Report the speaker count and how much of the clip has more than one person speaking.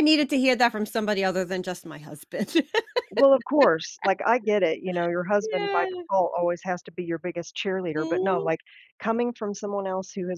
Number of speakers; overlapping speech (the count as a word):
two, about 9%